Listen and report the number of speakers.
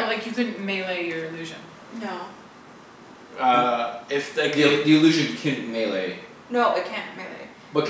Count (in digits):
4